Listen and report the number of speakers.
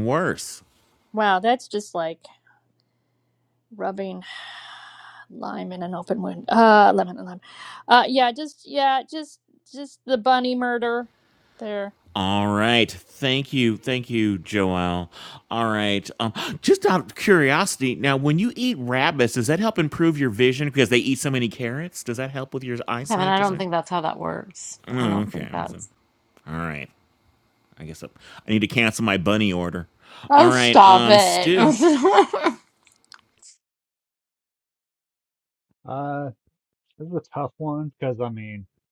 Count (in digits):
4